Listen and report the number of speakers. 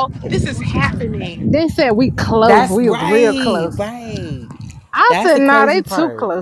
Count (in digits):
3